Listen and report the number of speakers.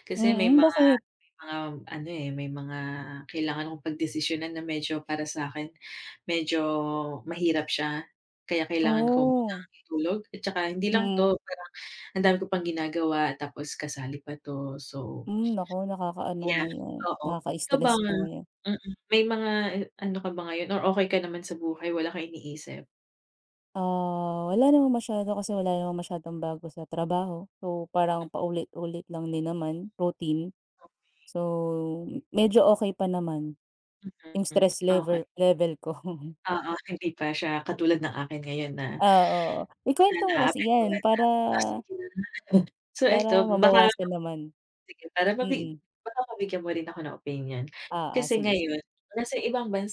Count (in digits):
2